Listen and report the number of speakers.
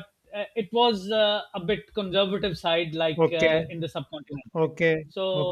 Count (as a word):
two